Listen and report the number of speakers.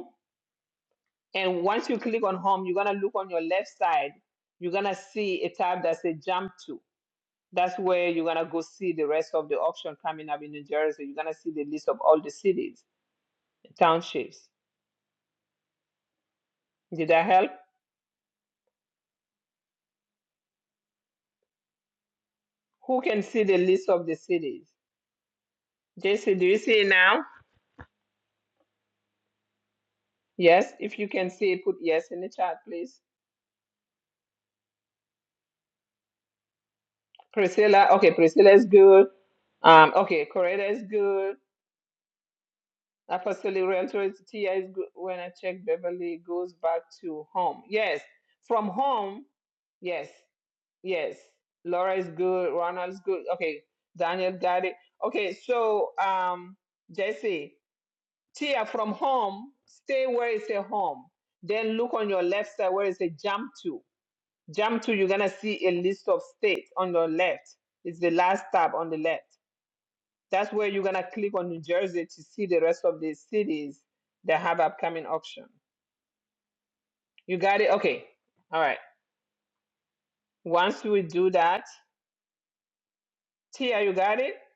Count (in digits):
1